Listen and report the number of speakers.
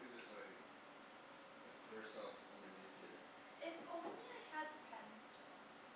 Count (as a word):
two